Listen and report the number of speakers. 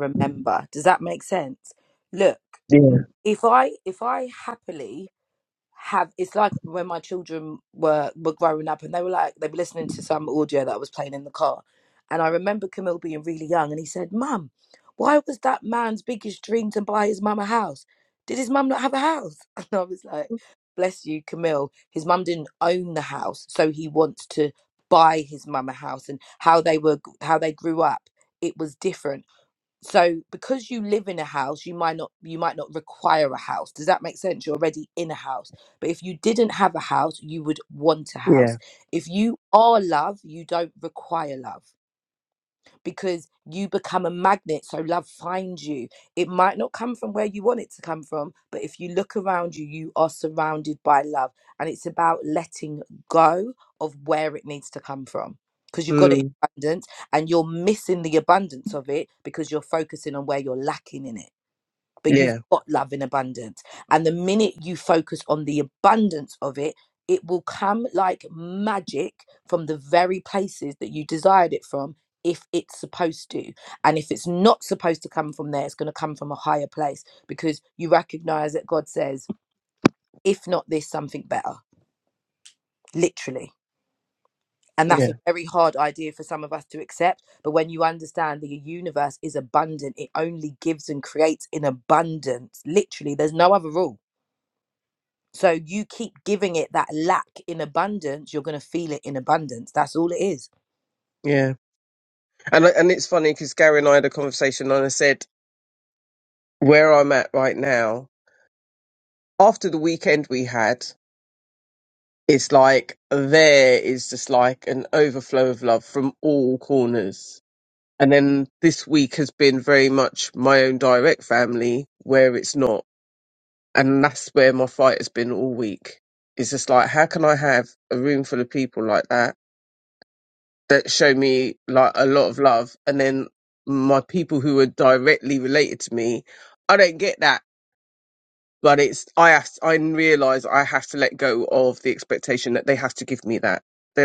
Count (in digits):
2